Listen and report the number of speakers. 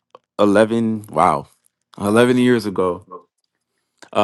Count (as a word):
one